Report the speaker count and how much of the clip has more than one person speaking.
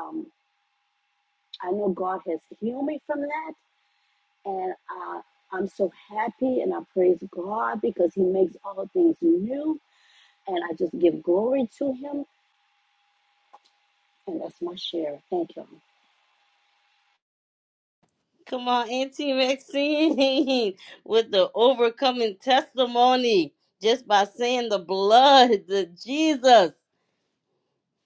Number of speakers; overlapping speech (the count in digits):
2, no overlap